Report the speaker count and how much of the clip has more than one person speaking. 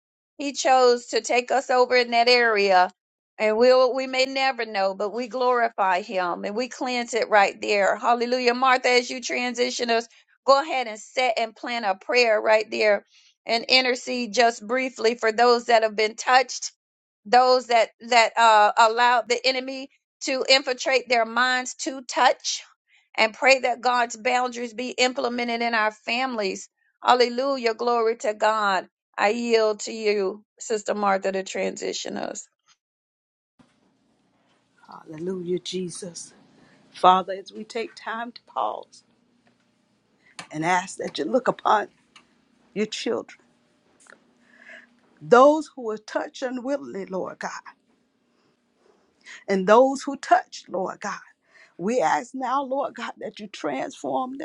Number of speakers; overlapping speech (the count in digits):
2, no overlap